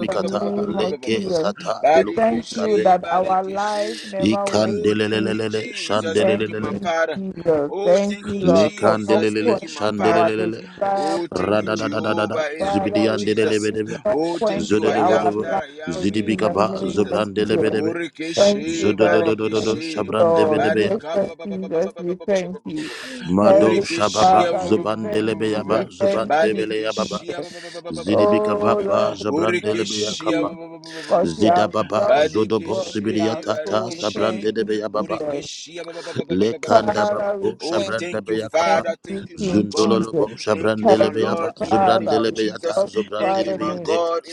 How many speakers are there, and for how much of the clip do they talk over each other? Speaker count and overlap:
three, about 82%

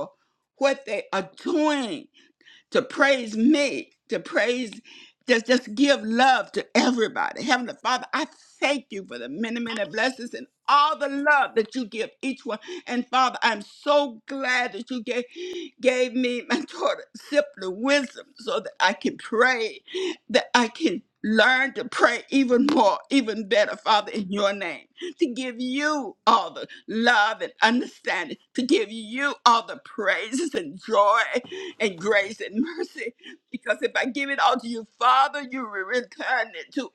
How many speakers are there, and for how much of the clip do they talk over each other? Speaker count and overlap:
one, no overlap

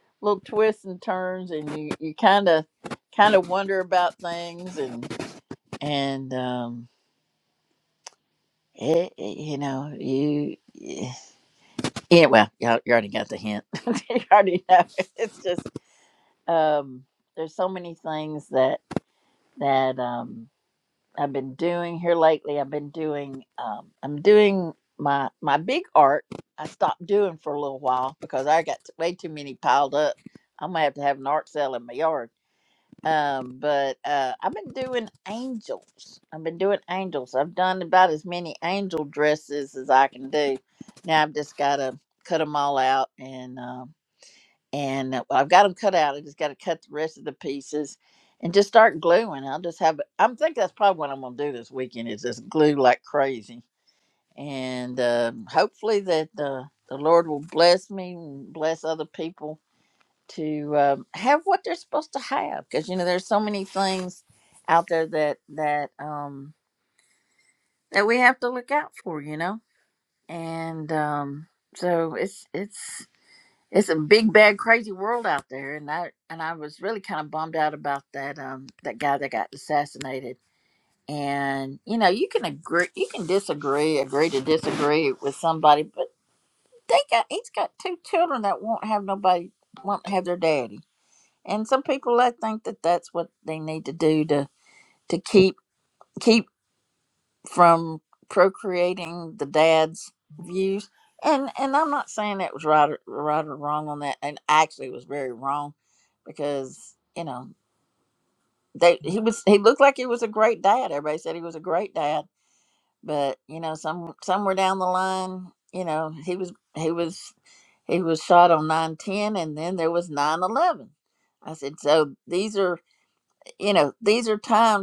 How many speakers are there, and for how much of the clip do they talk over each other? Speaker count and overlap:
one, no overlap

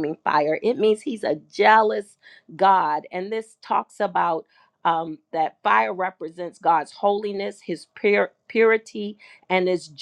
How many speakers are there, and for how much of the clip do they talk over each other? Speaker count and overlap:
one, no overlap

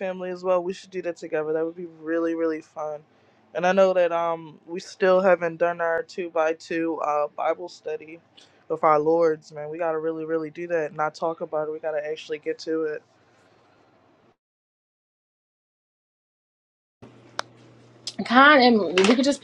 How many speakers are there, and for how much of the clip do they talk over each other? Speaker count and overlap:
two, no overlap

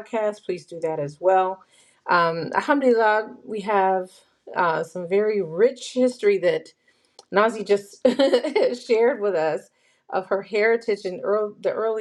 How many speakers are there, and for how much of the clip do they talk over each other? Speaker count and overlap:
one, no overlap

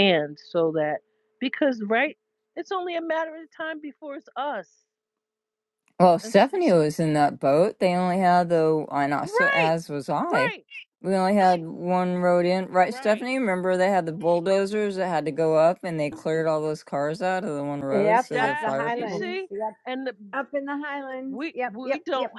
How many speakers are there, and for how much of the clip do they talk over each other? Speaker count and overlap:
three, about 17%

